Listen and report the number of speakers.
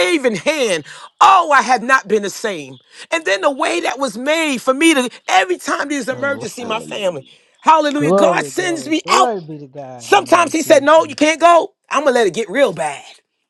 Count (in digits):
2